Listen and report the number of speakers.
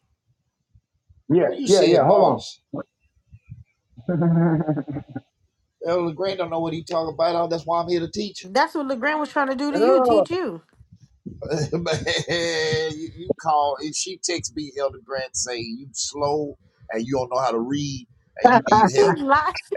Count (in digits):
3